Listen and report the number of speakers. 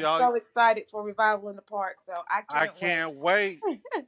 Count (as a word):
two